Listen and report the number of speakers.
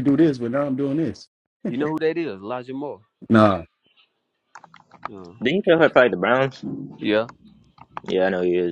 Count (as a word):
three